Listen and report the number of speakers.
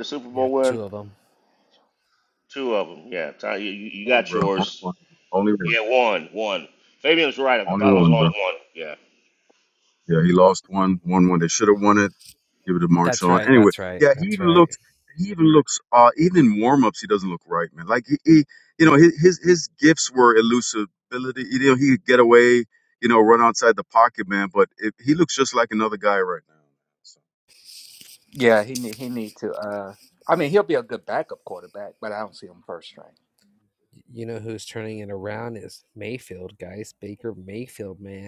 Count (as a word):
four